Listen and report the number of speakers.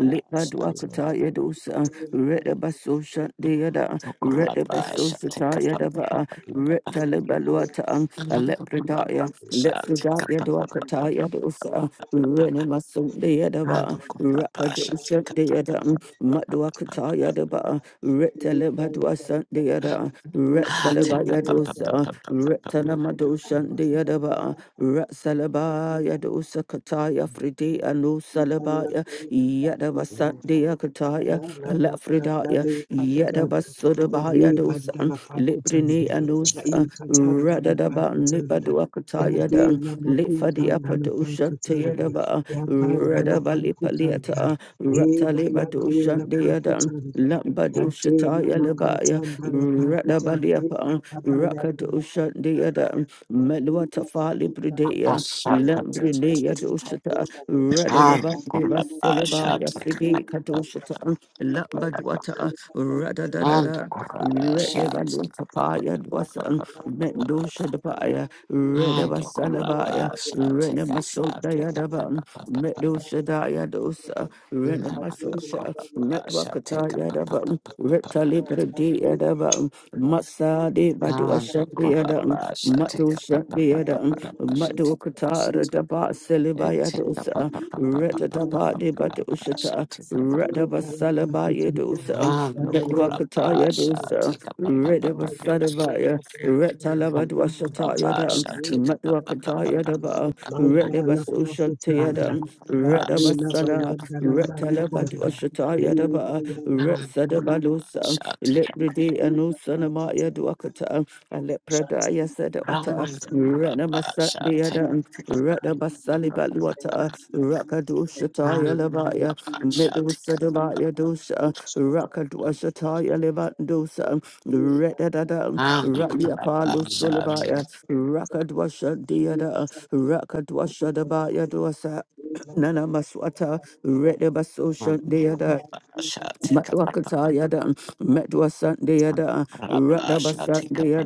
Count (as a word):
three